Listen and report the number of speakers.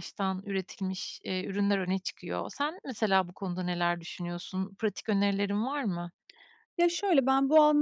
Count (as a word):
two